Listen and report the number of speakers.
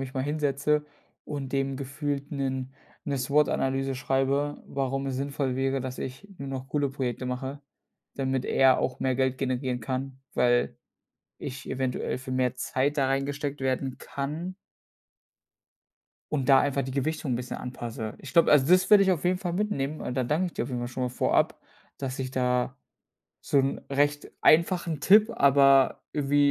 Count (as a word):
one